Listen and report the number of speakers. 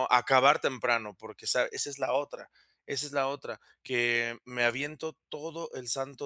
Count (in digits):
1